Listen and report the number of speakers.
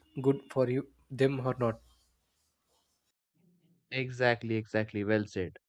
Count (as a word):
two